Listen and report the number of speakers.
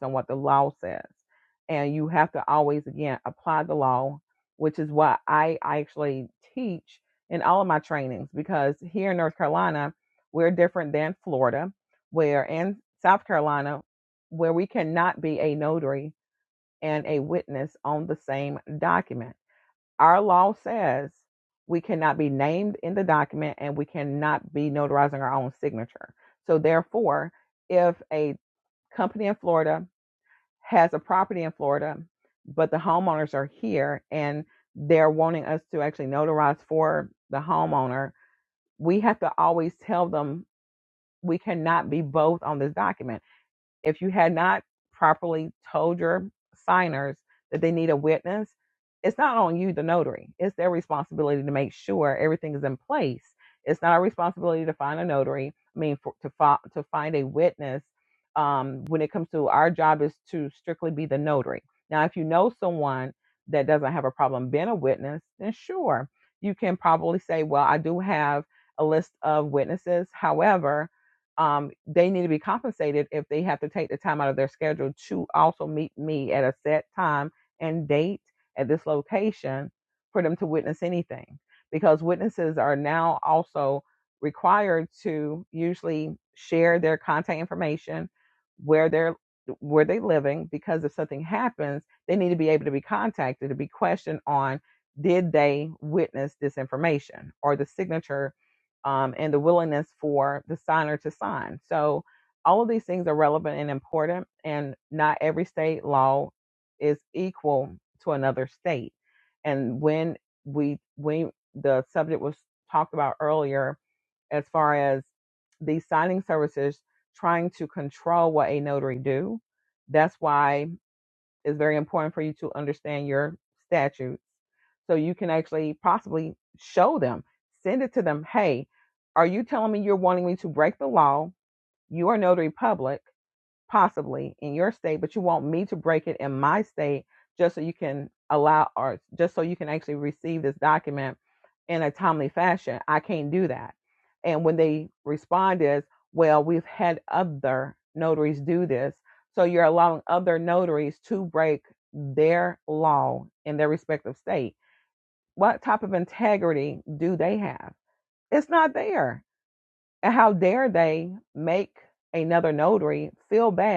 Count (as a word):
one